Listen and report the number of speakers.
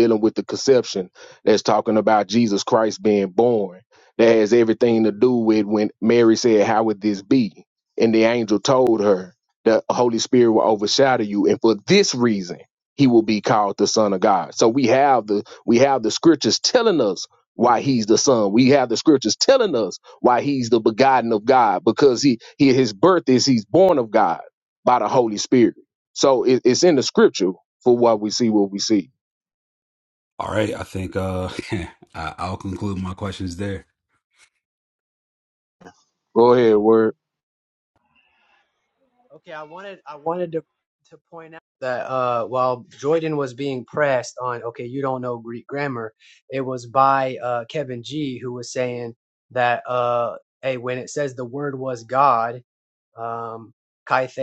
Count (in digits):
3